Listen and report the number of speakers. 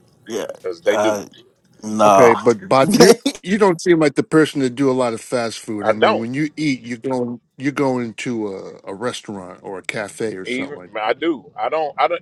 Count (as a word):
three